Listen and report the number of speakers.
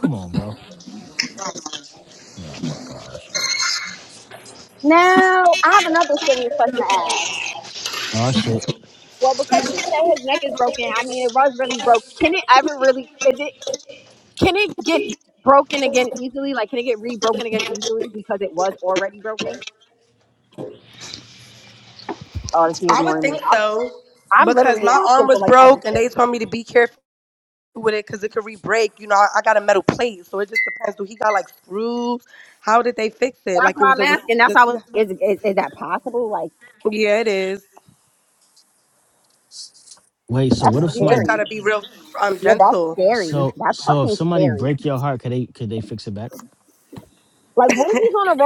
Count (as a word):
three